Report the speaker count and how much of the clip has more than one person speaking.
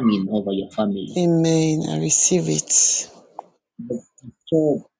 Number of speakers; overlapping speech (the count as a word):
two, about 1%